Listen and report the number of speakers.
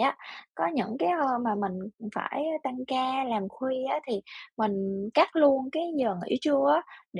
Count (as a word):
one